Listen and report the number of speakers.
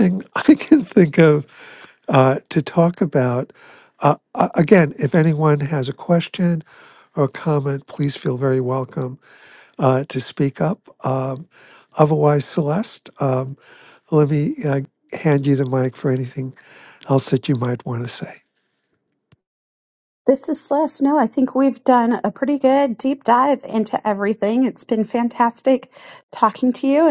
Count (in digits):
2